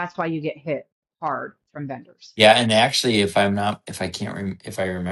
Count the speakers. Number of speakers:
2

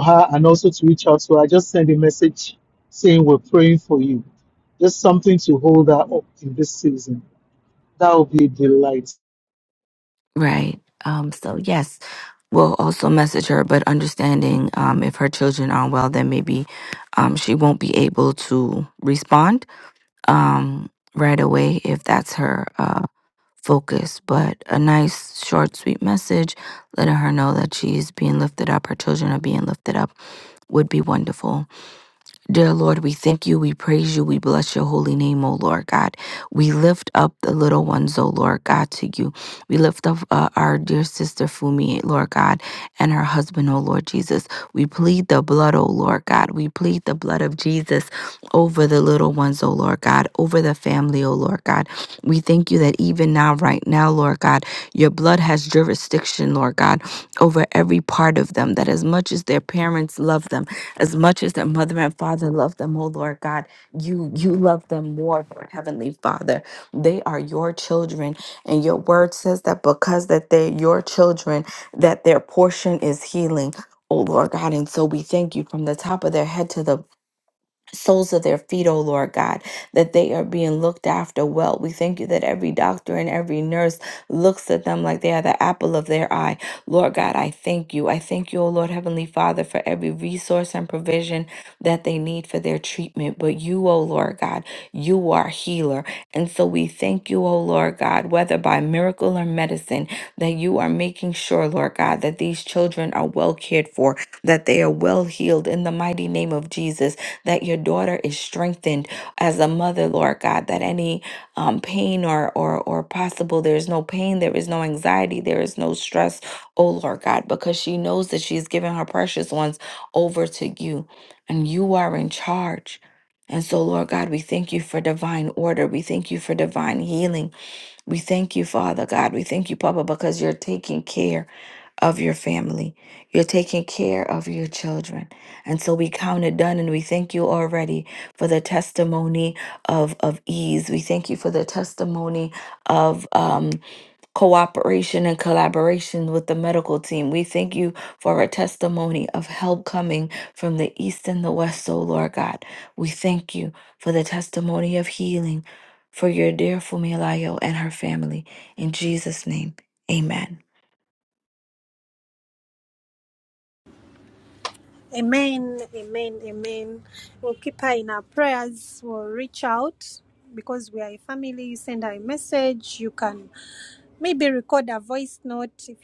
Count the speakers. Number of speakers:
3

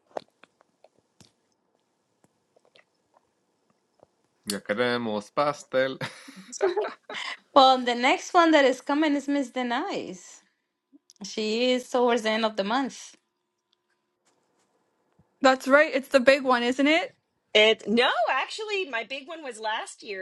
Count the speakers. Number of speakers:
4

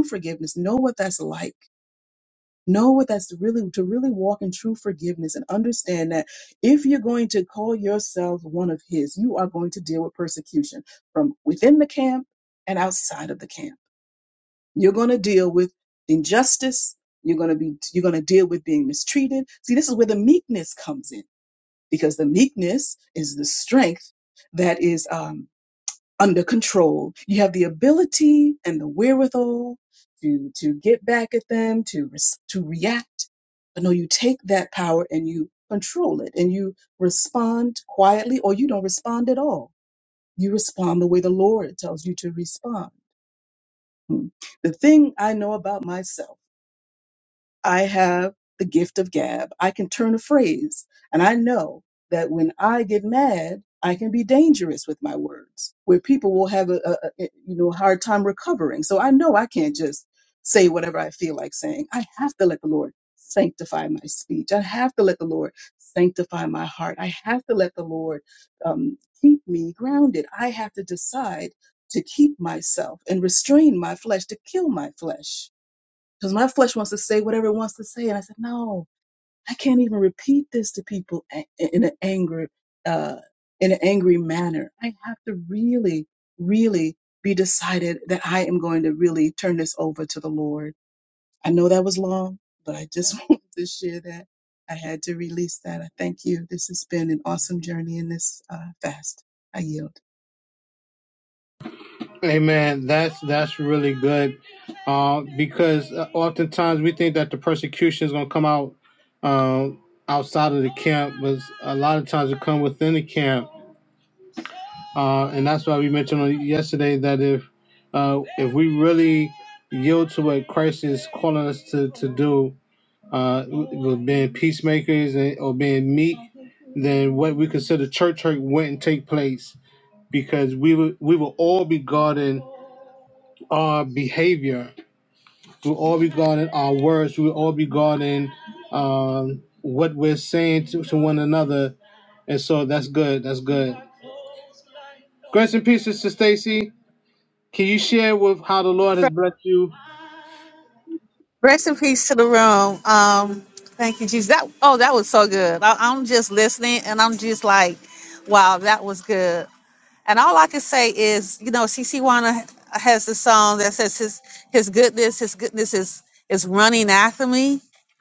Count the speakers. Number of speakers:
3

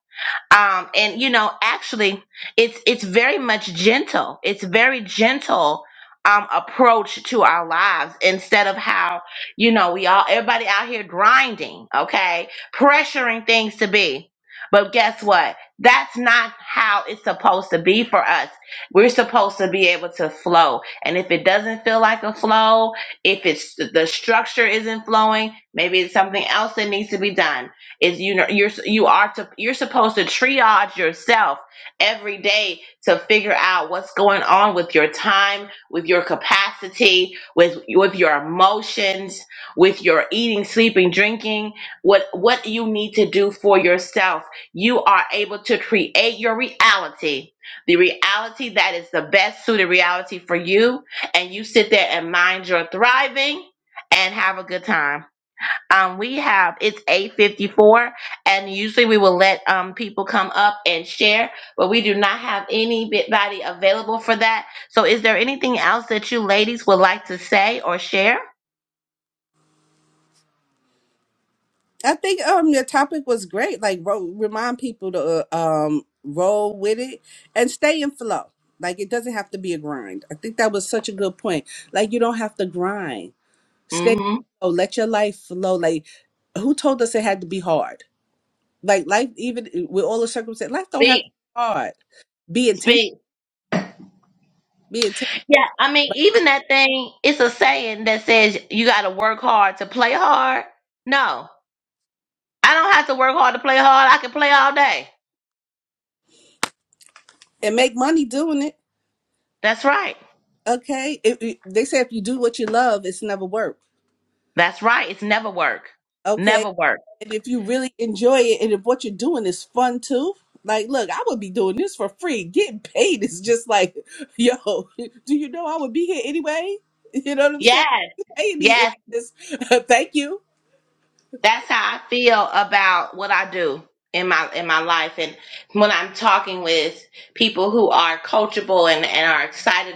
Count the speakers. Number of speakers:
2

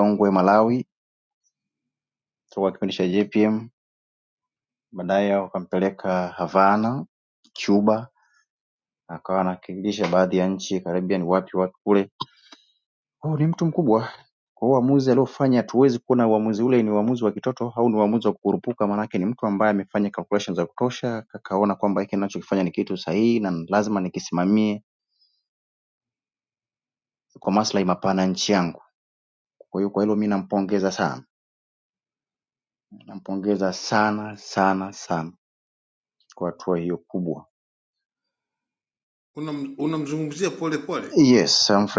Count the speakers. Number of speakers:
2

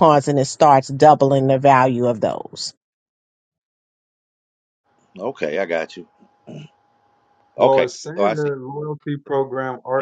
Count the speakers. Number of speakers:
3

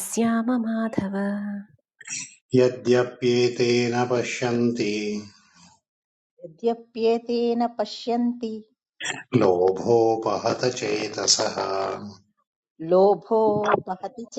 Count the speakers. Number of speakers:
3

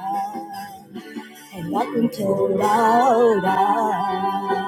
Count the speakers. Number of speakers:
1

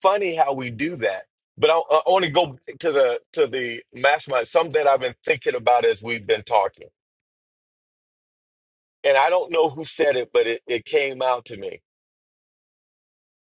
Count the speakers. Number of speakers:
1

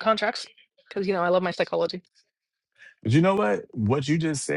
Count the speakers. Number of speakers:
2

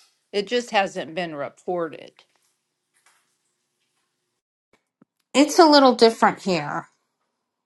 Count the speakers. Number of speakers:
2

